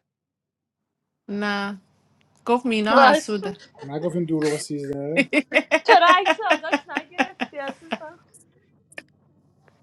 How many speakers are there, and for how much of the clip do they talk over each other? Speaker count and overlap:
three, about 3%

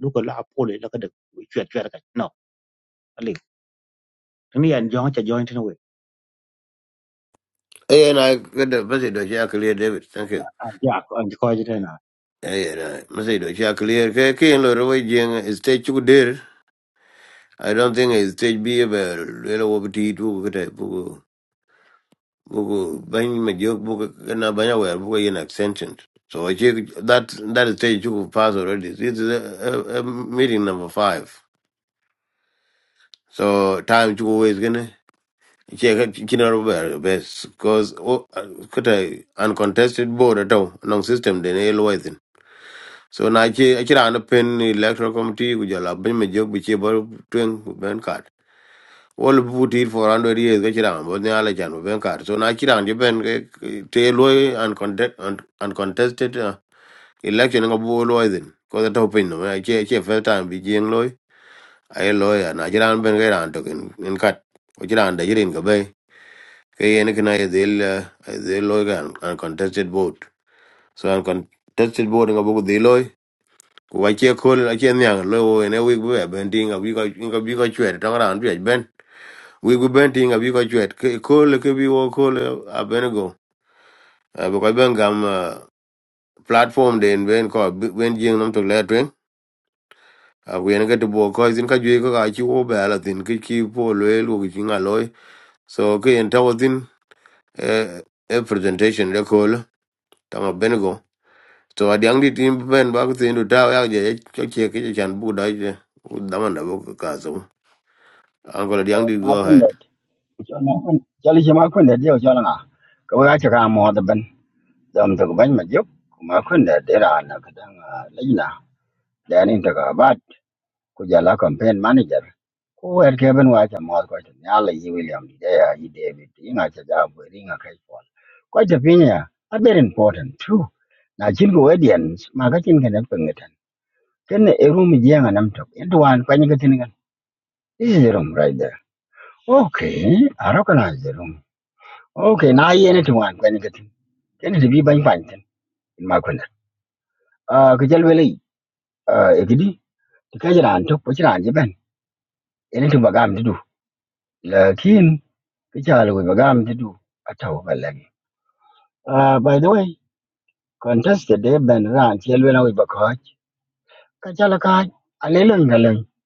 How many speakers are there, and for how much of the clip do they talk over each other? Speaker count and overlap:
three, under 1%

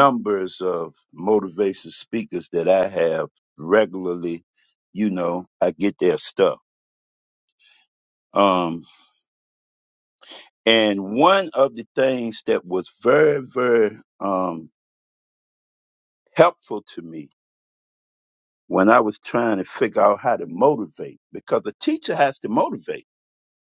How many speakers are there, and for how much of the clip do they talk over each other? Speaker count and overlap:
one, no overlap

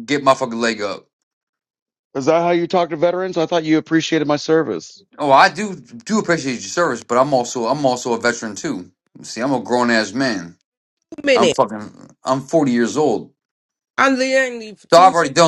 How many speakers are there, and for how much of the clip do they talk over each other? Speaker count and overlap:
three, about 3%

